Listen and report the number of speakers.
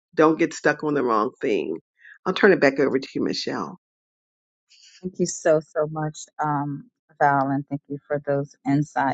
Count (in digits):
2